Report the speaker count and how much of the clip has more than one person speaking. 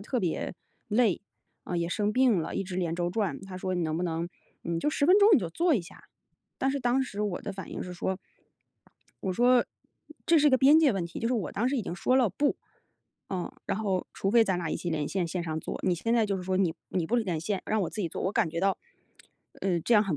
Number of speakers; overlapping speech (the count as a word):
one, no overlap